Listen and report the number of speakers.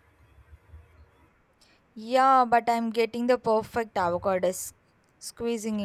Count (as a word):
one